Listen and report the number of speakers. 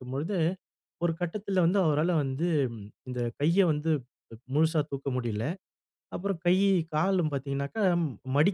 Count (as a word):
one